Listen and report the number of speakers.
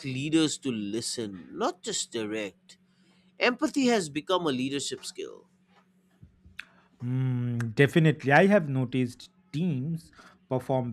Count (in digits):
2